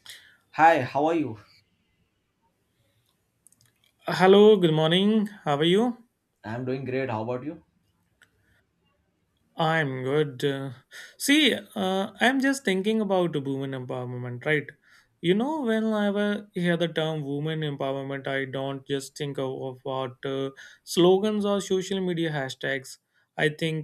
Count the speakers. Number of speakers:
2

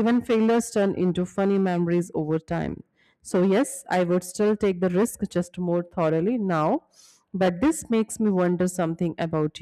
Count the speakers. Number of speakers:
1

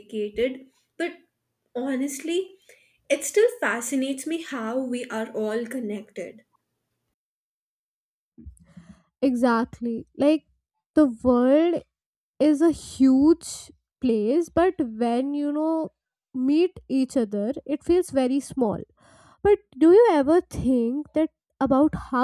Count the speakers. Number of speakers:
2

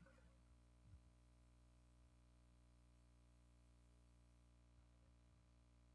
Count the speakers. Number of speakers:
0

